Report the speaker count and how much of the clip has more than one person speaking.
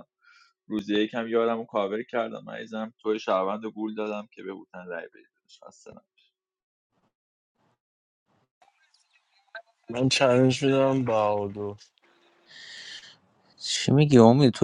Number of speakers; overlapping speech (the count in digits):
3, no overlap